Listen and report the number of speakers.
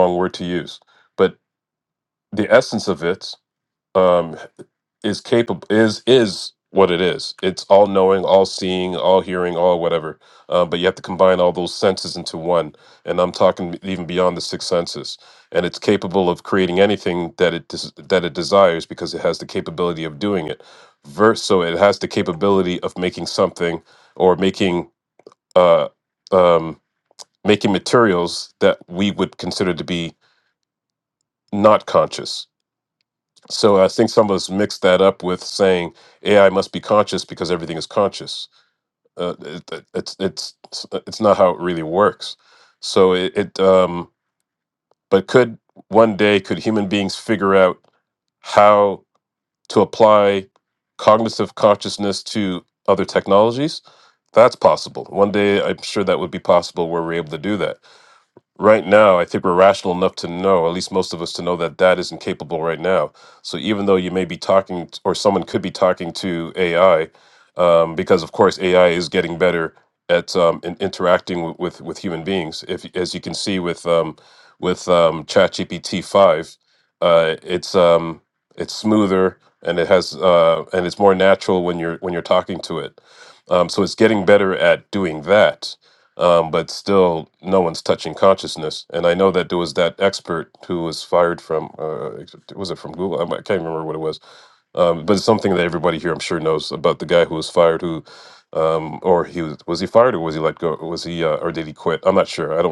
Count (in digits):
1